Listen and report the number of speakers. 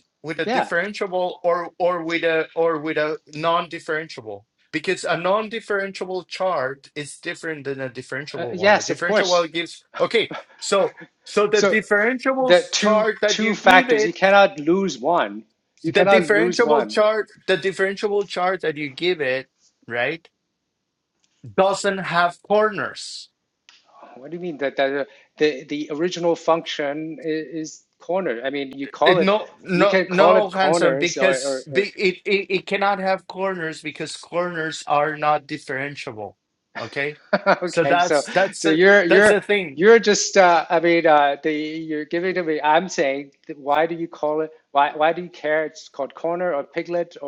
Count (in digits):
2